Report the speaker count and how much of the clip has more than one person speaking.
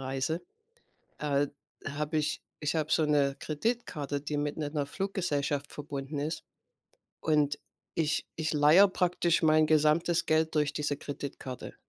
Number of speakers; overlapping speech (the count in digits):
1, no overlap